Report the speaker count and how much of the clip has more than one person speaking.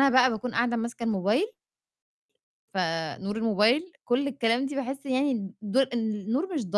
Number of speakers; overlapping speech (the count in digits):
1, no overlap